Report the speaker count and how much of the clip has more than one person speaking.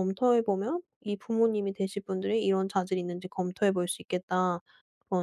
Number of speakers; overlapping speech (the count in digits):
1, no overlap